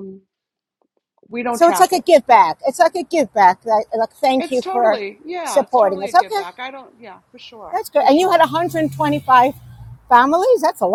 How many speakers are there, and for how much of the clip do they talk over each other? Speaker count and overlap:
2, about 24%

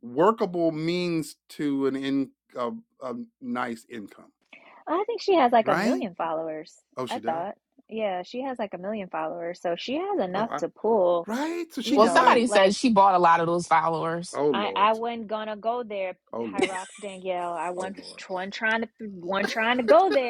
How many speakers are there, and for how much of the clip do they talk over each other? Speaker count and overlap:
3, about 15%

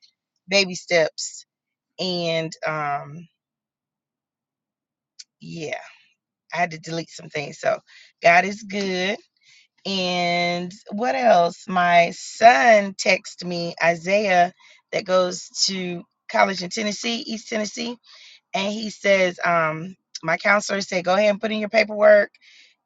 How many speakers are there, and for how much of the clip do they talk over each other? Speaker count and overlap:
1, no overlap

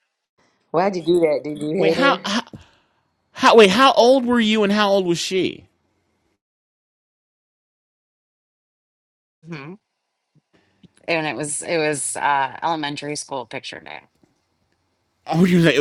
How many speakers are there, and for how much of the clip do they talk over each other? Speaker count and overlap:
3, about 3%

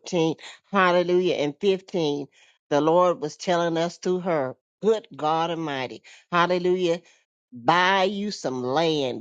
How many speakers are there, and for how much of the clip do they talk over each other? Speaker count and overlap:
1, no overlap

